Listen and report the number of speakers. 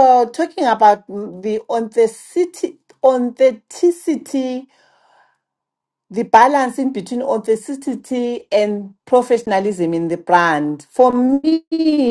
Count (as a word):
one